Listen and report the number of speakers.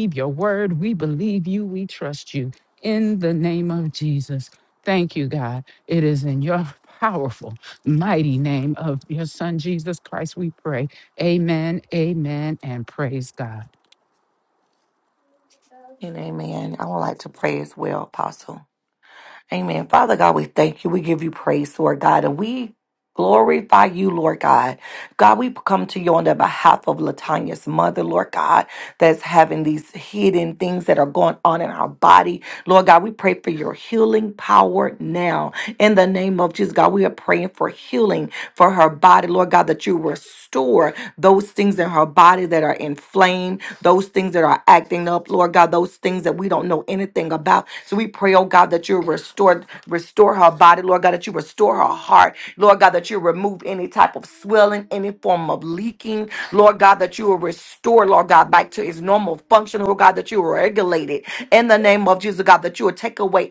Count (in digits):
2